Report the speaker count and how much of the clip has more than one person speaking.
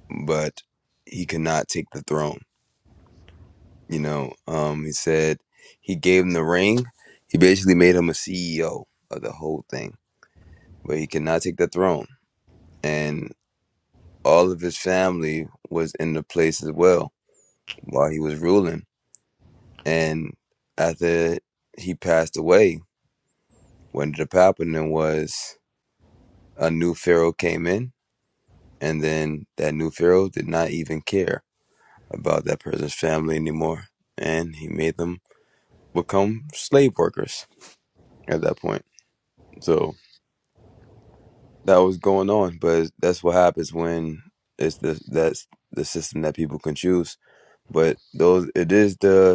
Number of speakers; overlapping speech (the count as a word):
one, no overlap